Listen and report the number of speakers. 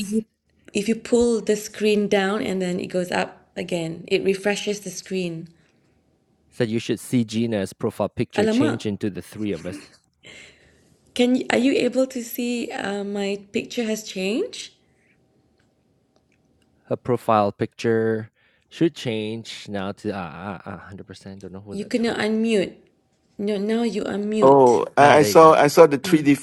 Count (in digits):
3